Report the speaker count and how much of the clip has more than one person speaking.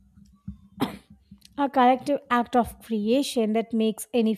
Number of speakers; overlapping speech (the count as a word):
one, no overlap